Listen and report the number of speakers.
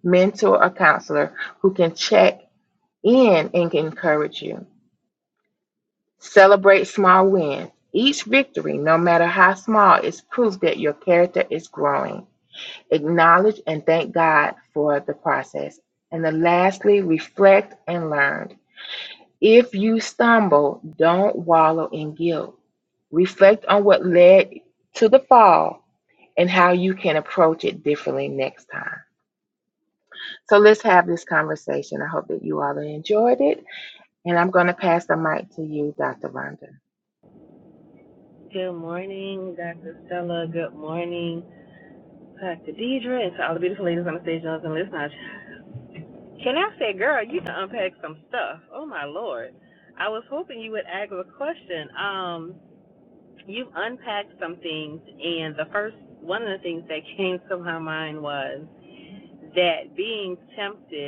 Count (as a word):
two